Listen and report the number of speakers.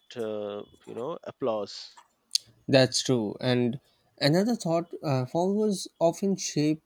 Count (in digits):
2